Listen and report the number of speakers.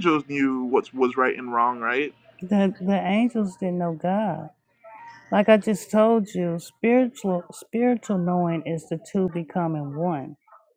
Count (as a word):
two